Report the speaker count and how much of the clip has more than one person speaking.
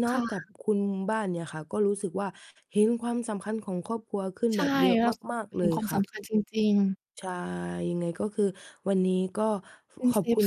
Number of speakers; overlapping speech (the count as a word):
two, about 18%